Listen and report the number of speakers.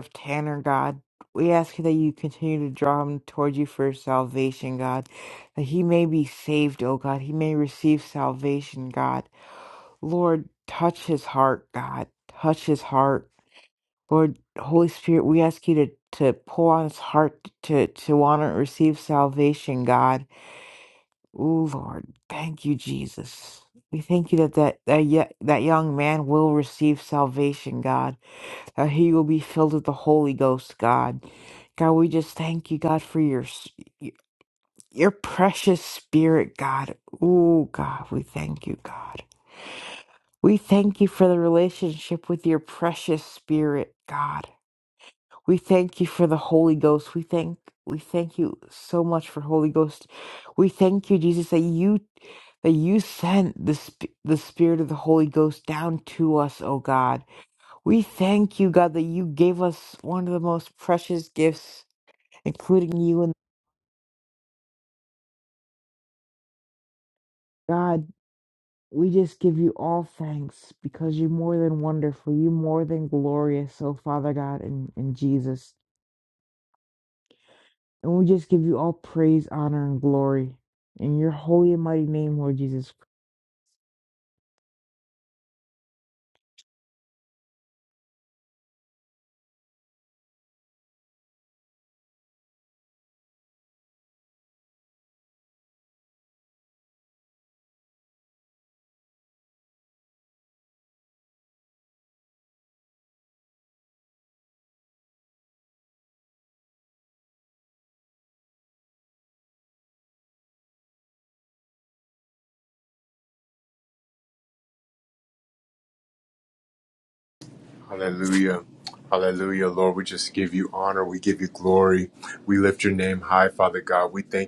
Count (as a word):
two